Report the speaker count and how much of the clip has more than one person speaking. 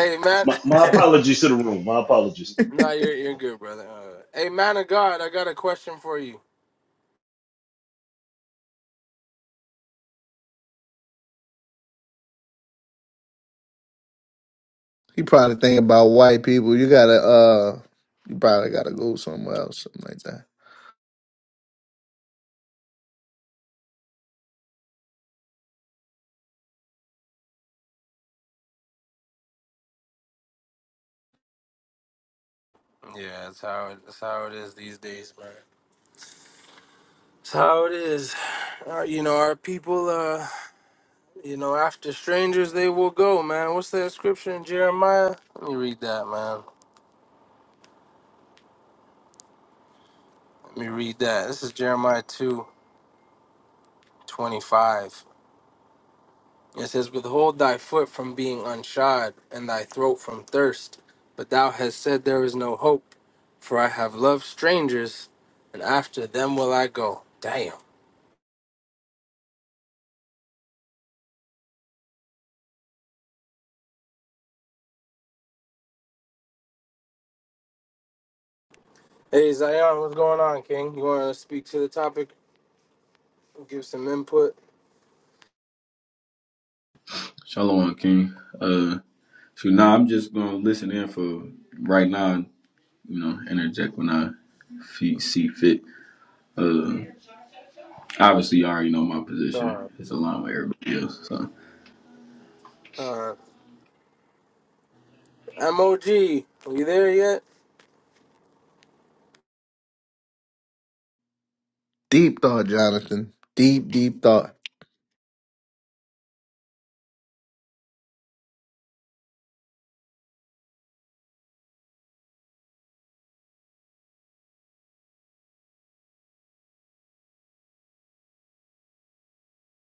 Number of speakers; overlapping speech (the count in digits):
4, under 1%